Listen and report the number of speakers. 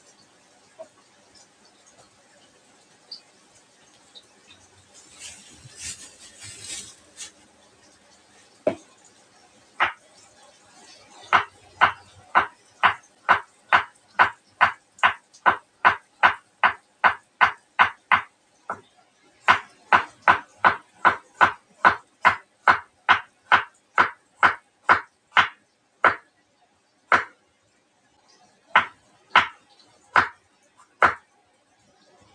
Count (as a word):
zero